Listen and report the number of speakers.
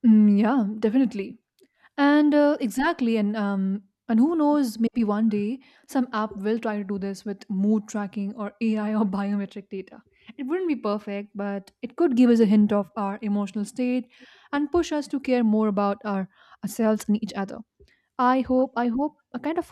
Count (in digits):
1